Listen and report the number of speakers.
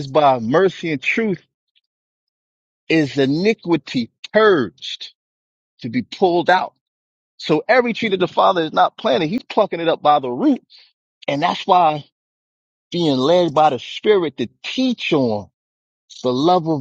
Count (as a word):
one